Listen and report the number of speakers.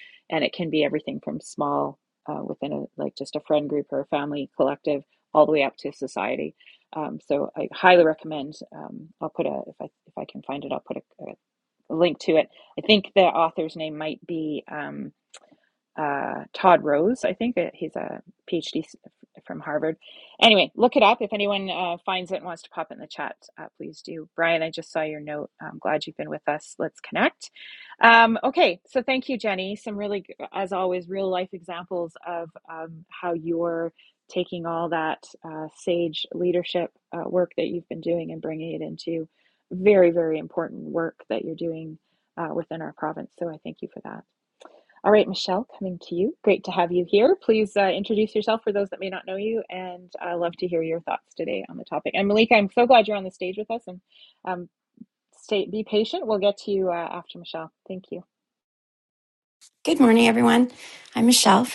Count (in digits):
2